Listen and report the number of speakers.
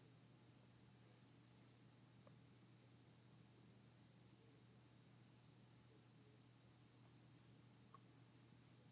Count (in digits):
0